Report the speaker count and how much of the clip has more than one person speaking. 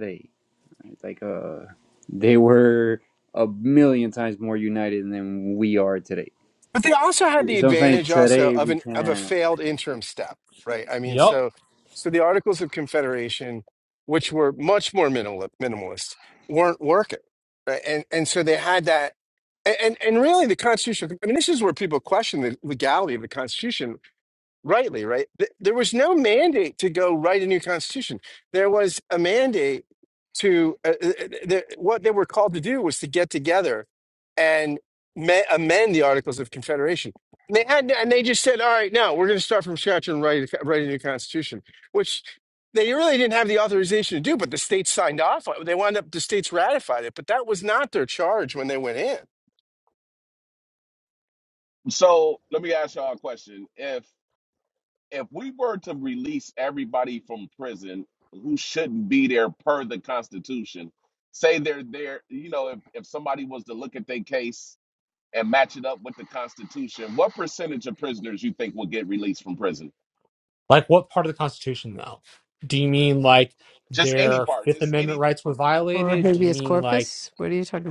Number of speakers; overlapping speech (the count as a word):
five, about 6%